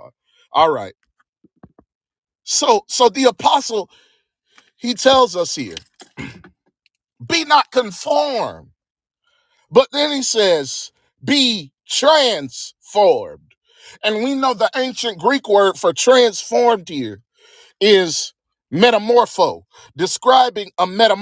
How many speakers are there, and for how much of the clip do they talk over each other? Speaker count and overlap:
1, no overlap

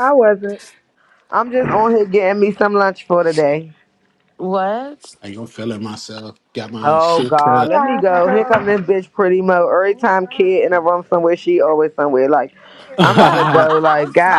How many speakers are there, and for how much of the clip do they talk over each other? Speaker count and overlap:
4, about 27%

